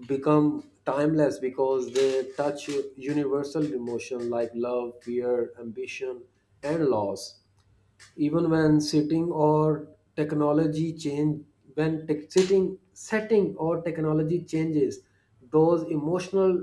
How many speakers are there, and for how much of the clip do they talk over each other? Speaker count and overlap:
one, no overlap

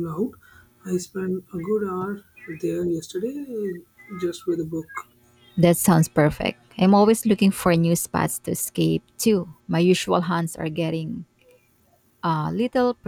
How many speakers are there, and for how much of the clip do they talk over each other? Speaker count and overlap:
two, no overlap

